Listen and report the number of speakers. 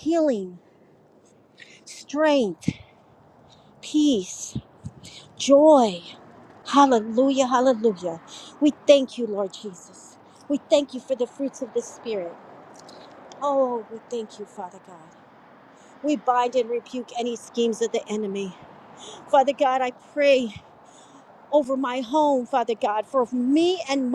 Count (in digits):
1